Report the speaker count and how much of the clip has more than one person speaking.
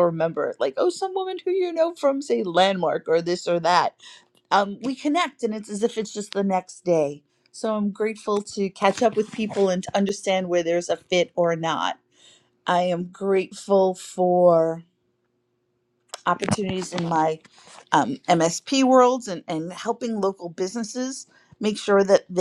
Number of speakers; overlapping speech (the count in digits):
1, no overlap